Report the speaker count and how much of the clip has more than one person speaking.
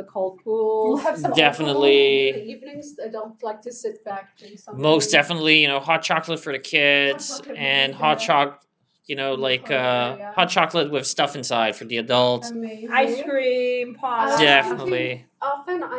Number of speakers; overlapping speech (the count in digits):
3, about 35%